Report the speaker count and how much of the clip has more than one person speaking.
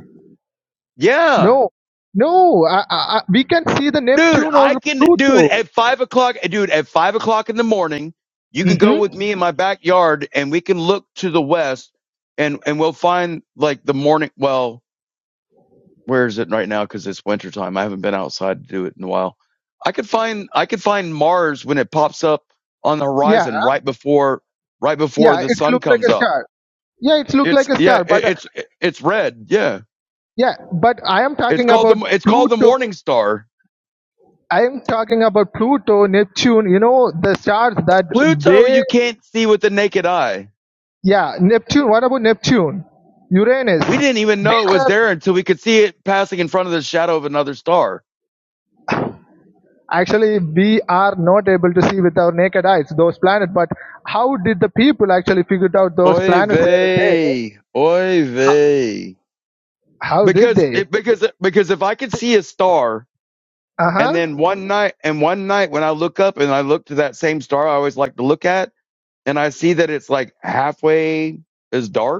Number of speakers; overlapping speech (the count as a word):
two, about 12%